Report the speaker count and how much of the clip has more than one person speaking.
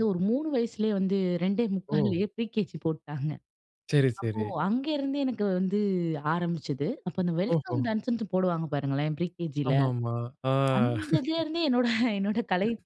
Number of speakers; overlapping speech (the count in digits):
2, about 9%